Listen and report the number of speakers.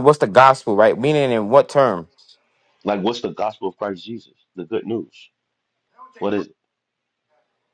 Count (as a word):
two